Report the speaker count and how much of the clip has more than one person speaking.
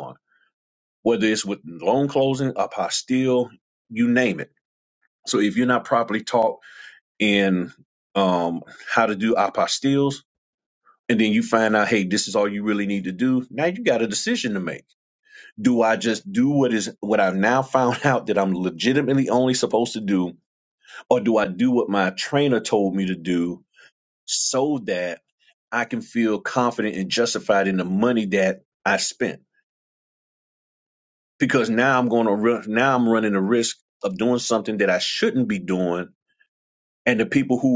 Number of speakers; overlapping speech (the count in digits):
1, no overlap